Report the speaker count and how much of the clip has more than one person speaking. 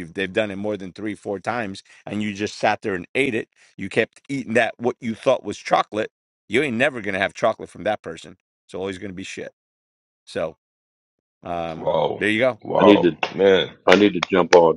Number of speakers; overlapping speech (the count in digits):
3, about 3%